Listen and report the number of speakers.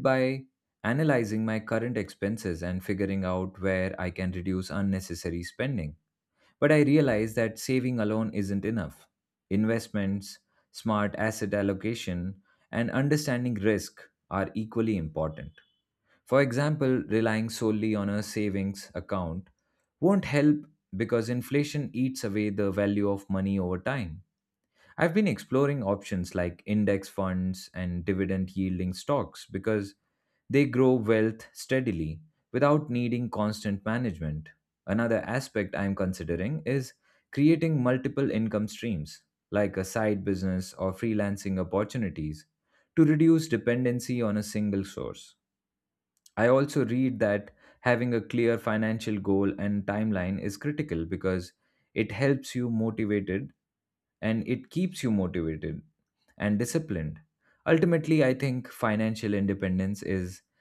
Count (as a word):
one